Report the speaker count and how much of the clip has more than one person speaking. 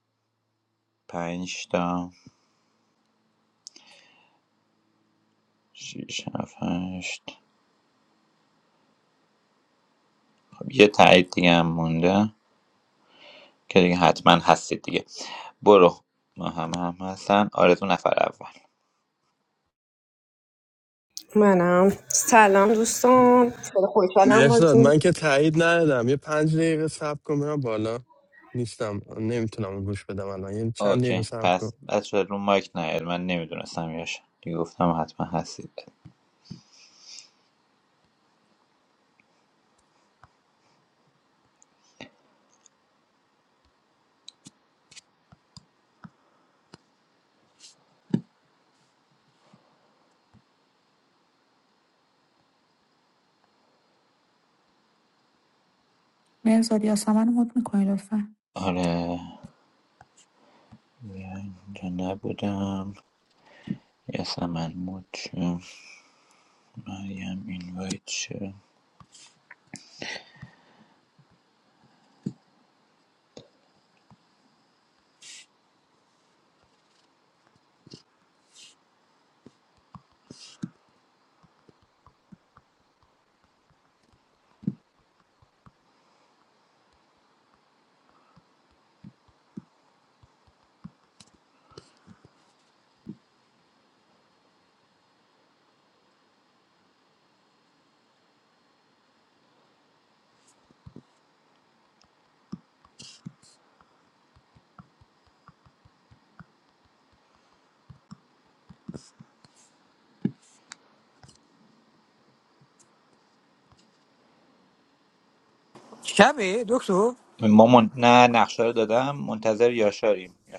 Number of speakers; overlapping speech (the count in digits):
5, about 1%